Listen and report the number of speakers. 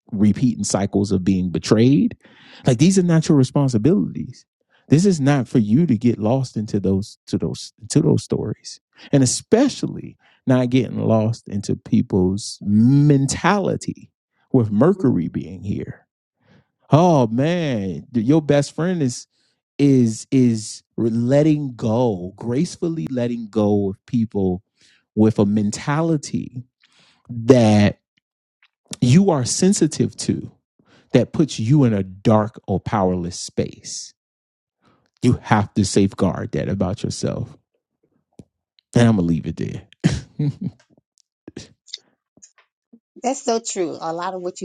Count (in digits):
2